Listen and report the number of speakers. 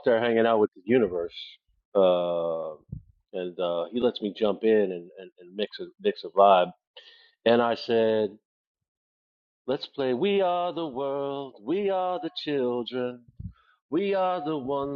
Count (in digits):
1